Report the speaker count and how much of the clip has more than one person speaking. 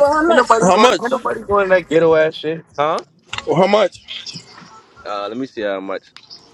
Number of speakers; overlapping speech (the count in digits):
3, about 16%